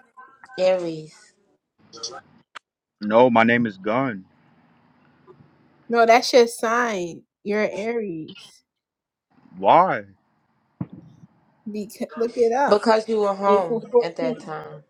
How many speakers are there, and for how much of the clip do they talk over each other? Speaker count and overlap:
three, about 7%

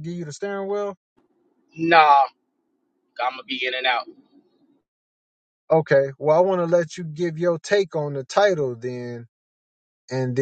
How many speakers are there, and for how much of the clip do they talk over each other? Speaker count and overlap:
two, no overlap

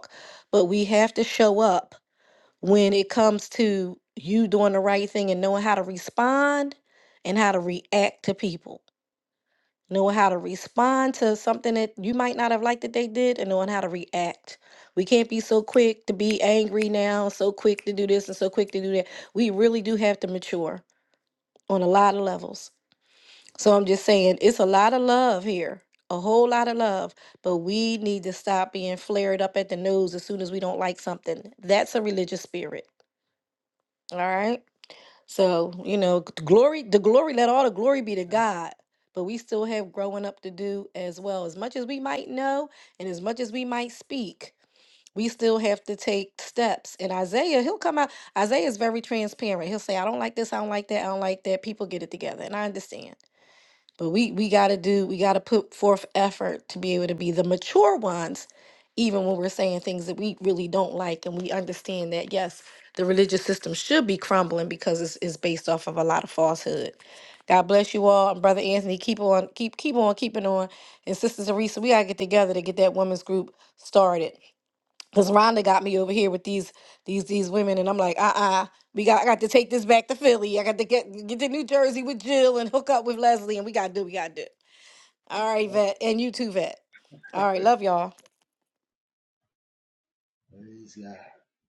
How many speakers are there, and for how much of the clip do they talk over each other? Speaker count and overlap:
two, under 1%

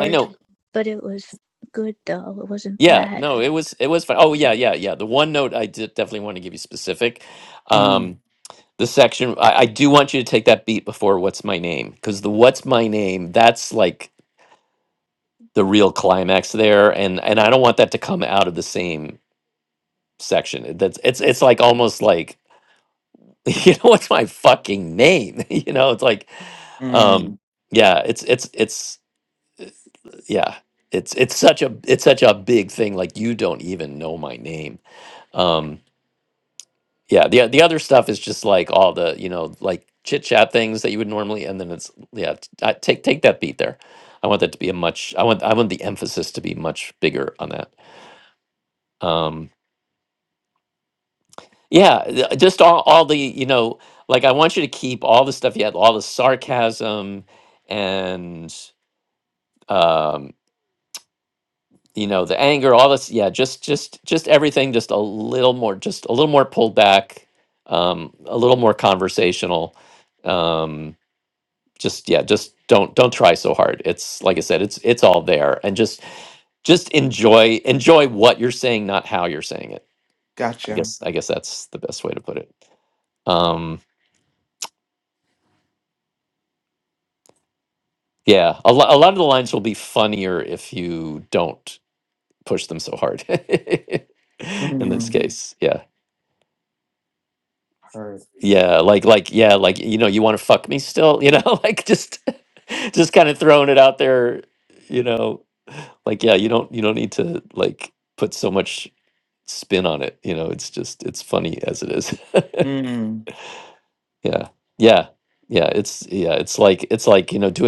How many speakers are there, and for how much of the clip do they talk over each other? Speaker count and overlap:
three, about 2%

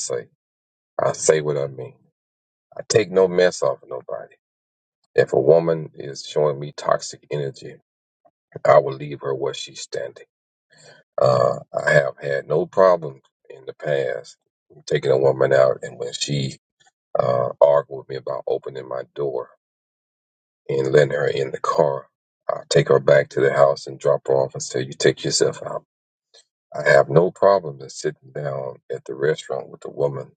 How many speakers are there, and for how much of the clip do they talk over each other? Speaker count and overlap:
one, no overlap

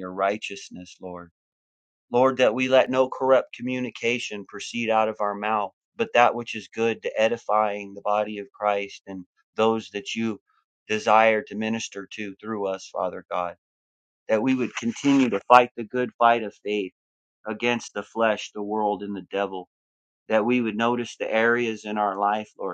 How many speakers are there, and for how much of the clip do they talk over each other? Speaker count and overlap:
one, no overlap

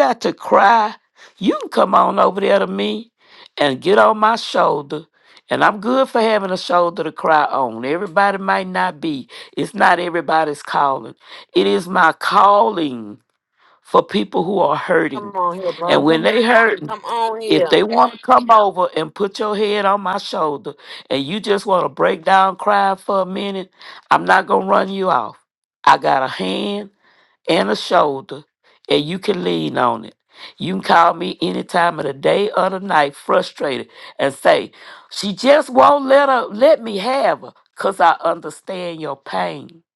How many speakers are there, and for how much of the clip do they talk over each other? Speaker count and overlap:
two, about 2%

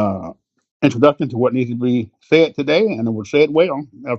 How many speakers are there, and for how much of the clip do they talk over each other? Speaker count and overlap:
one, no overlap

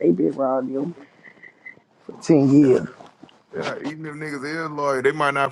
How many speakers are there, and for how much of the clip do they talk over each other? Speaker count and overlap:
two, about 2%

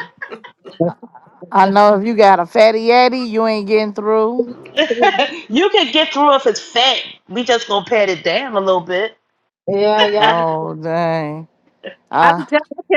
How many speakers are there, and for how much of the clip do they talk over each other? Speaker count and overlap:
three, about 4%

